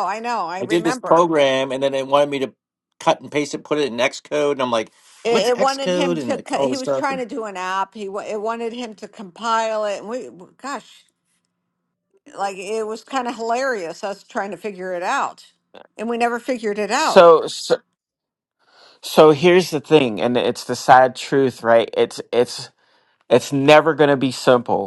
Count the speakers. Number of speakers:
three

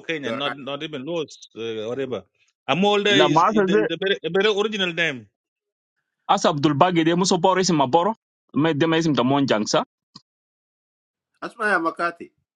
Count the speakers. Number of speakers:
three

